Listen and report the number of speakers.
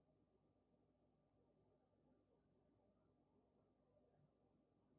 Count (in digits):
0